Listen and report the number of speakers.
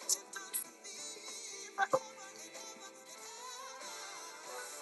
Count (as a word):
zero